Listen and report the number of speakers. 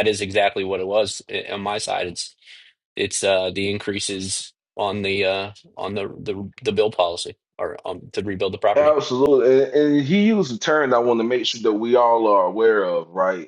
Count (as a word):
two